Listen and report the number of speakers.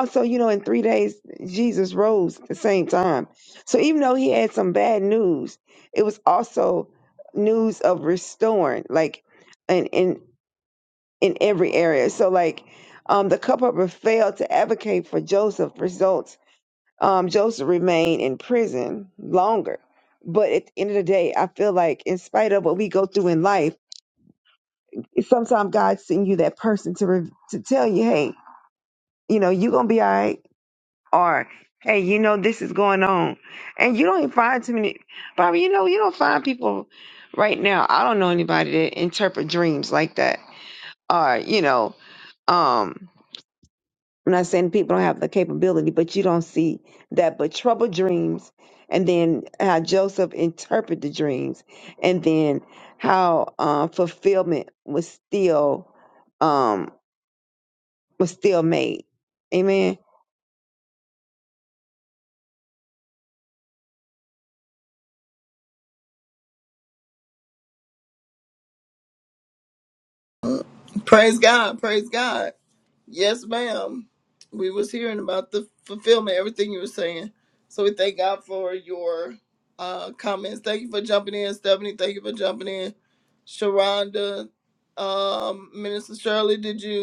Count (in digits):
2